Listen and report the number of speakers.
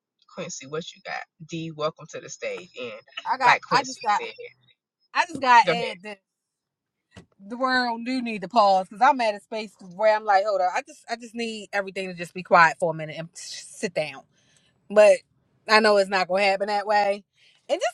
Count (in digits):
2